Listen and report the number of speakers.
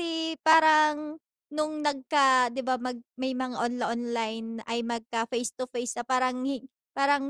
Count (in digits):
1